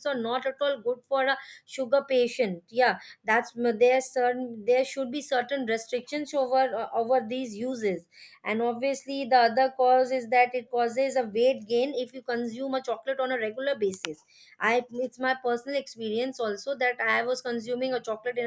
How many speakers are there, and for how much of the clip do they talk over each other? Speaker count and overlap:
1, no overlap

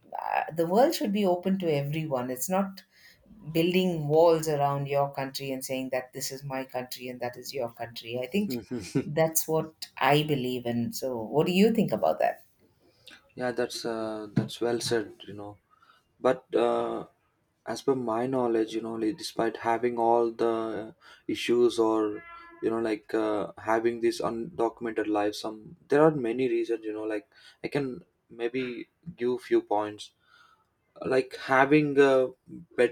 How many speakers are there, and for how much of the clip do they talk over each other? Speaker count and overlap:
2, under 1%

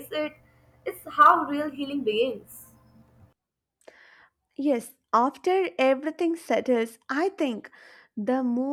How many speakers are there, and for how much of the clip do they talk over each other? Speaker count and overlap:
2, no overlap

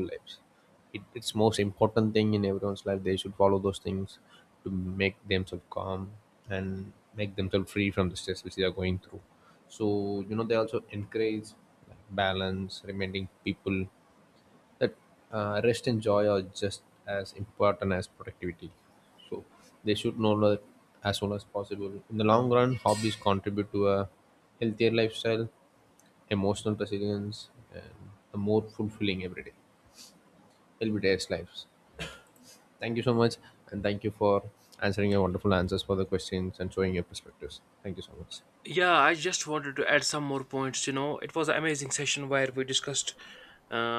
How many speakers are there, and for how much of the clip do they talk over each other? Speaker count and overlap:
2, no overlap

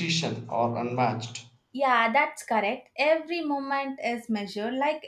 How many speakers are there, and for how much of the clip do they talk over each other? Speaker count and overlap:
2, no overlap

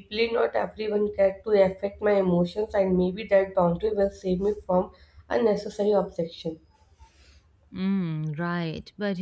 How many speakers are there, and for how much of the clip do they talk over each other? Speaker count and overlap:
2, no overlap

